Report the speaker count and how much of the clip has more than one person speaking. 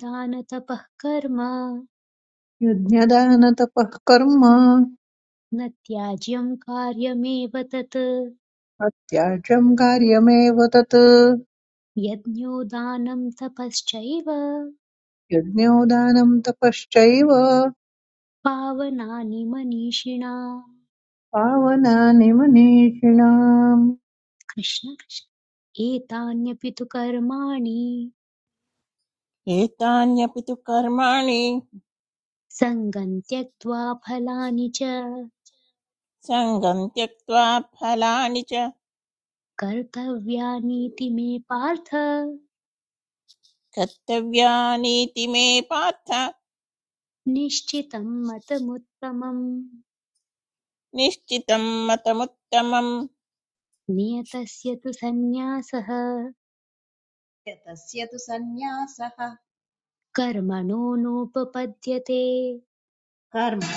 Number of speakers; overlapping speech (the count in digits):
4, no overlap